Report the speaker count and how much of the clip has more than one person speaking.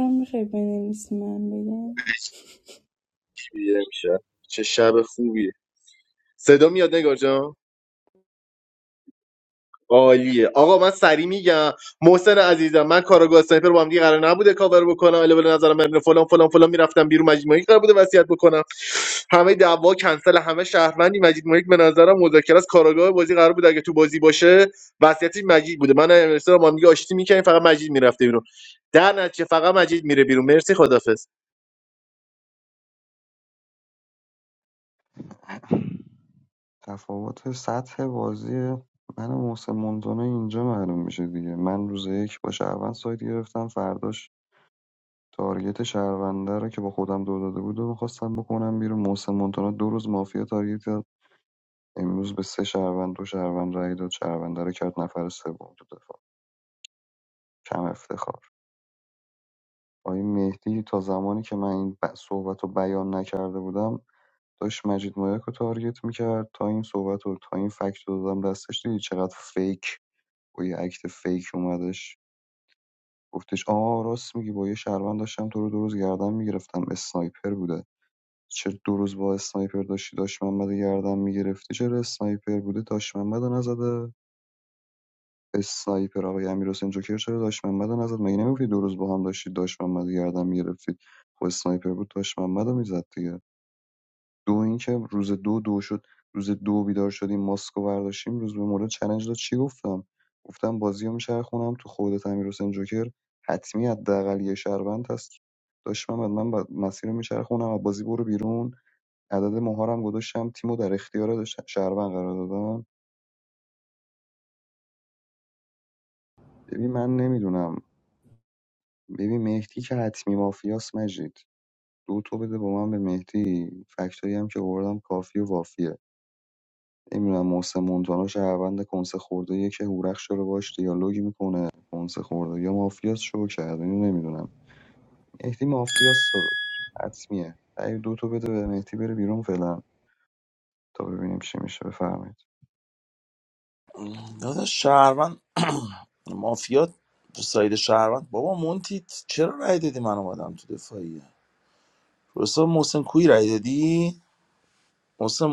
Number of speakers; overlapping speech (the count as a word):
four, no overlap